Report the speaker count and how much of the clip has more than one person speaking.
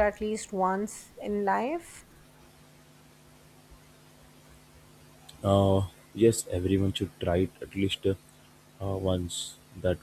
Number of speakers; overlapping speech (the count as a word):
two, no overlap